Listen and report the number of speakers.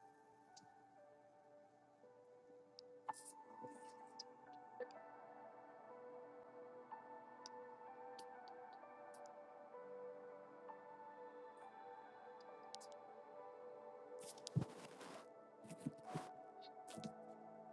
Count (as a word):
zero